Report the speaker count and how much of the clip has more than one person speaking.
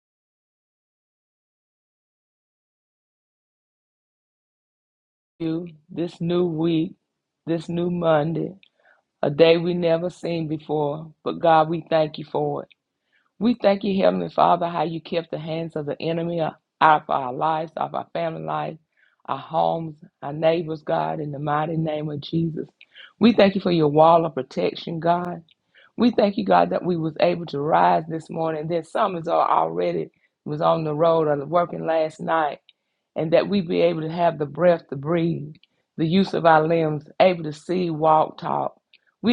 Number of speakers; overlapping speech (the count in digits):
1, no overlap